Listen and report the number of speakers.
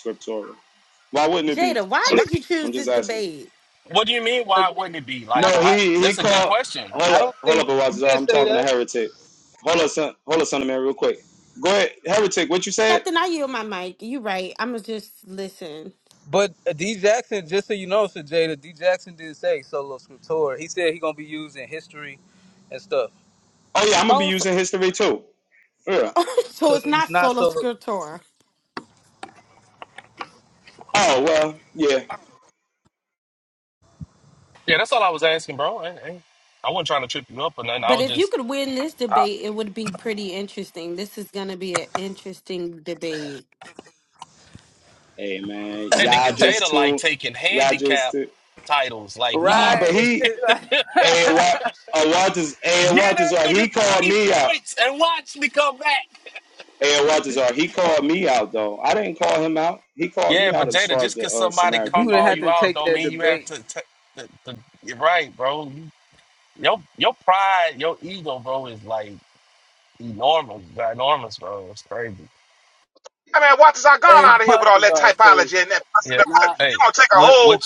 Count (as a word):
five